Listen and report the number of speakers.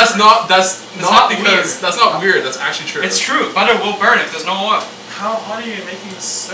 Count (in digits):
3